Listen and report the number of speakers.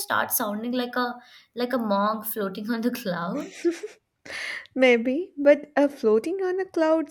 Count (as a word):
two